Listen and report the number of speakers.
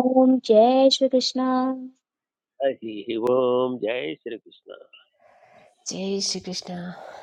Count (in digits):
3